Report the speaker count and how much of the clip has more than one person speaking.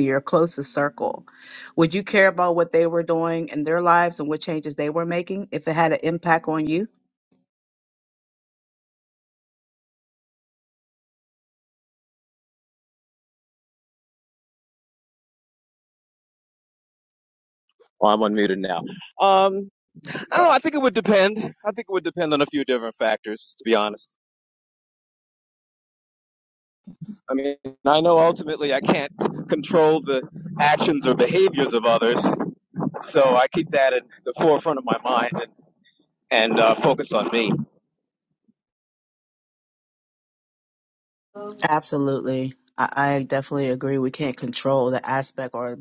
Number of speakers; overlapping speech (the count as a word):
two, no overlap